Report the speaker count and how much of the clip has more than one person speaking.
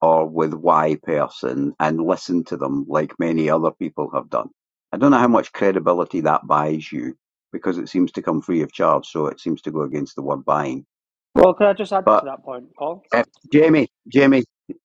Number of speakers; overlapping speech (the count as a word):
two, about 1%